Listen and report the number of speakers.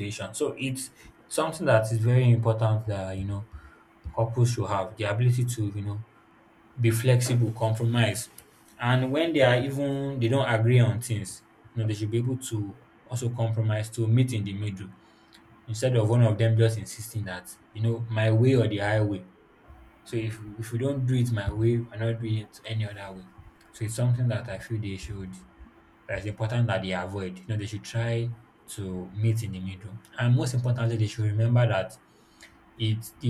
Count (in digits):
1